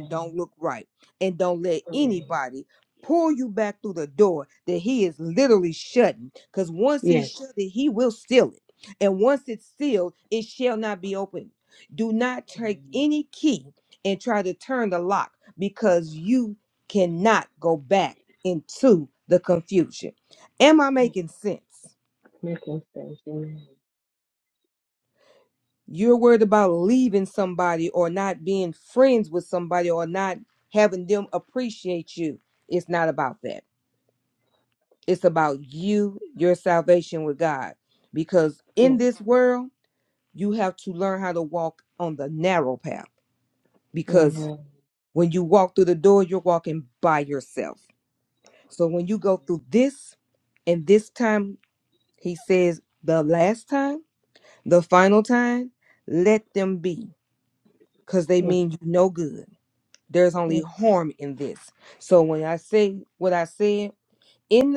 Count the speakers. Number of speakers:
2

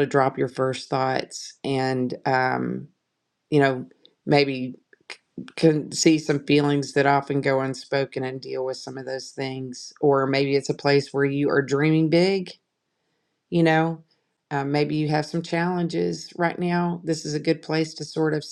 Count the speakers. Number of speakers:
1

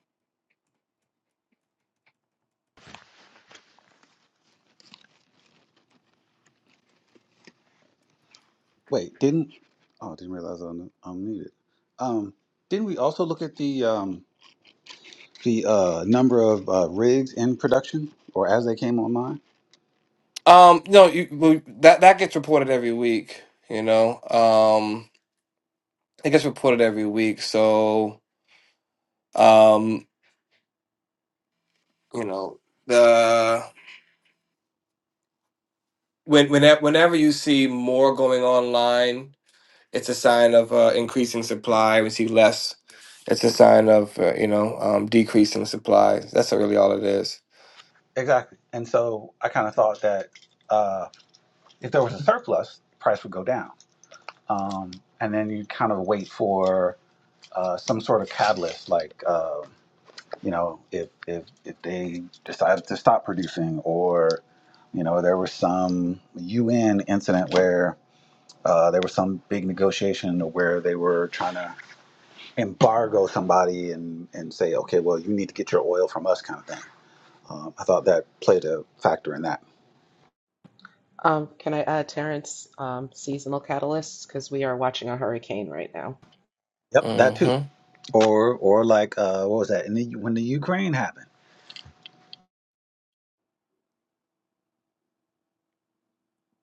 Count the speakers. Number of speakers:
3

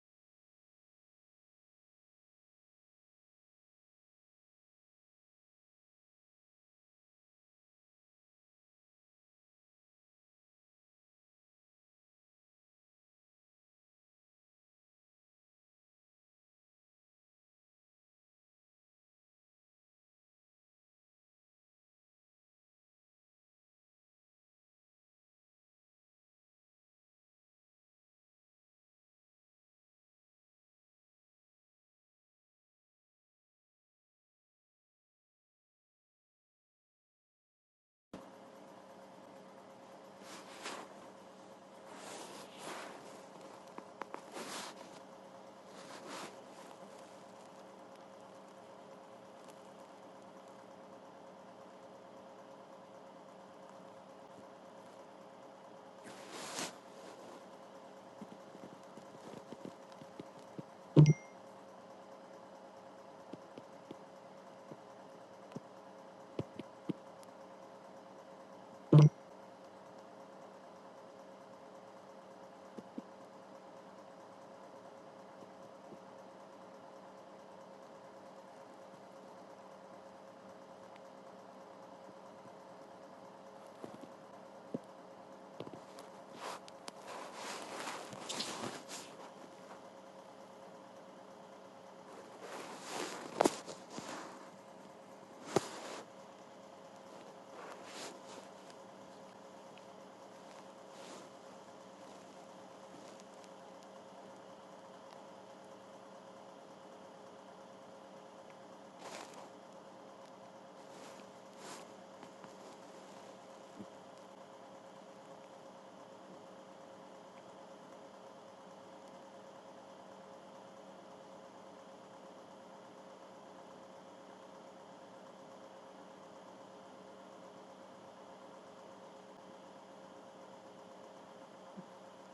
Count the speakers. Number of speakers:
0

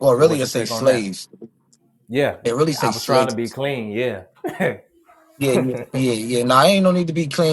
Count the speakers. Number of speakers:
2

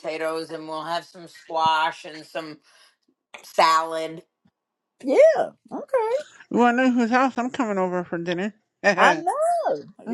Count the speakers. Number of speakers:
3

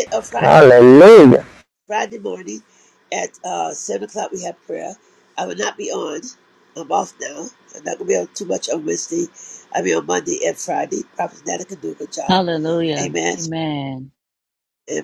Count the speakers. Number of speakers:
3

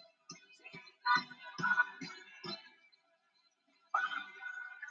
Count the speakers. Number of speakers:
0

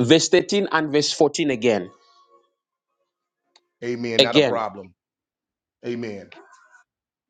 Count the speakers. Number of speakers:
2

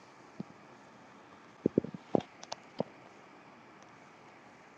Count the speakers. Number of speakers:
0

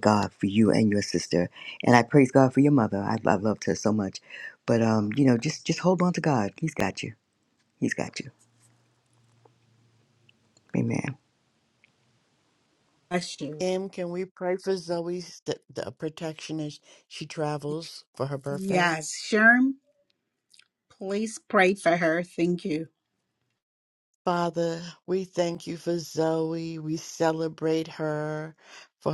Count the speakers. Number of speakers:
3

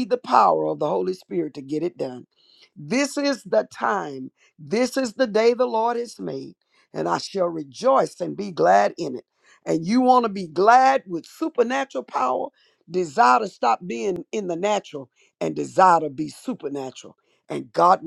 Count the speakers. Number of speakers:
1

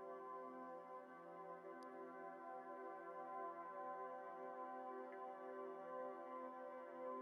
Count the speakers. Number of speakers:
0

